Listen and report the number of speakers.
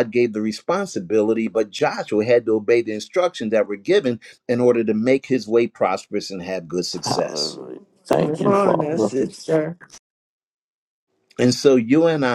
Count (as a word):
three